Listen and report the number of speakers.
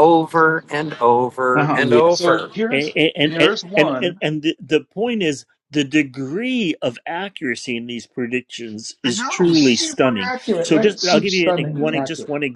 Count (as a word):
three